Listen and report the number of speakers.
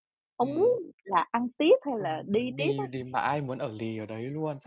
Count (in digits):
2